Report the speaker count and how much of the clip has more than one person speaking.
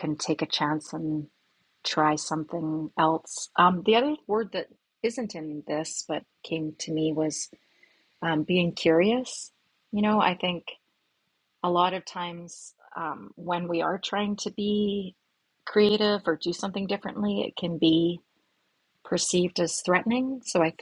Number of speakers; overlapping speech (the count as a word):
one, no overlap